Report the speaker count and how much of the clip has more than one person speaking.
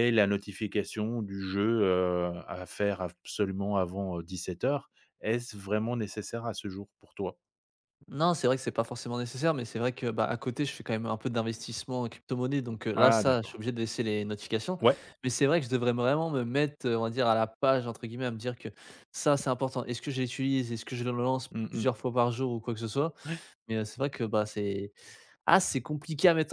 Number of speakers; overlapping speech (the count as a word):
two, about 3%